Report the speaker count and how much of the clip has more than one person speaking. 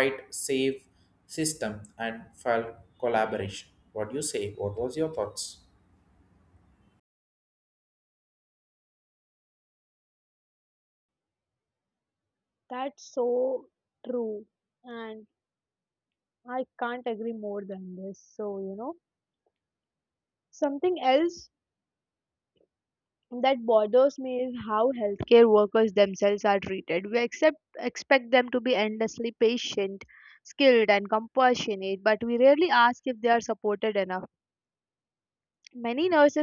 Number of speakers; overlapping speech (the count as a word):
two, no overlap